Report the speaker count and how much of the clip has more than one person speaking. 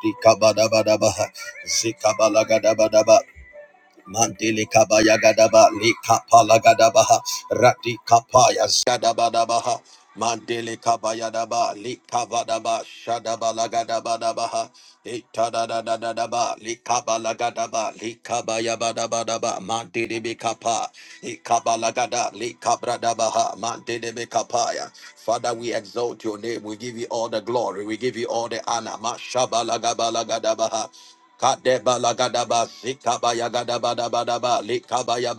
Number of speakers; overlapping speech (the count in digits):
1, no overlap